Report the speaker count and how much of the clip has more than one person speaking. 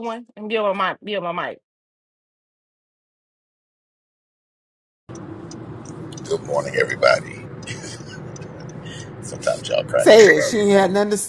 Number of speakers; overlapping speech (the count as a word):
three, about 6%